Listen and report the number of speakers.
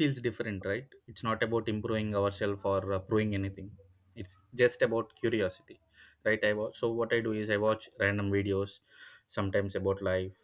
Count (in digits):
1